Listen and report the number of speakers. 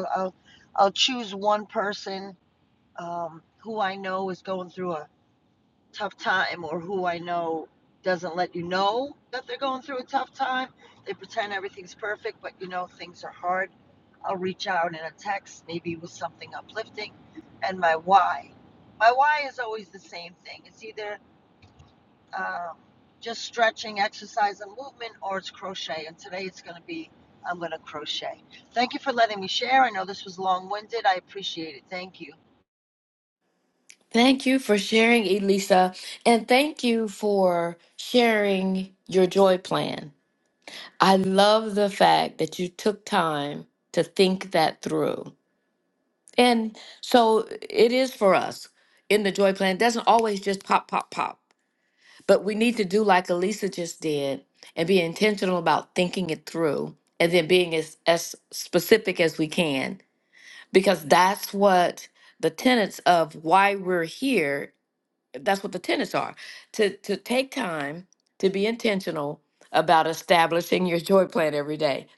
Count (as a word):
two